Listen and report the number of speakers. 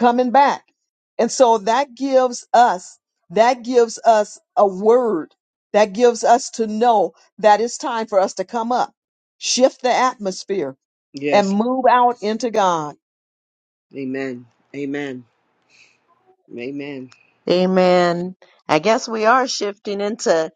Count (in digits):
3